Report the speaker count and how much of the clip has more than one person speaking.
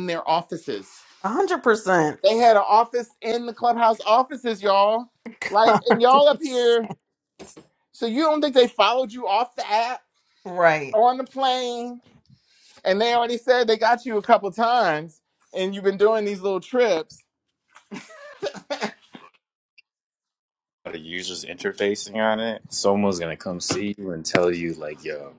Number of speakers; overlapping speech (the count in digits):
3, about 3%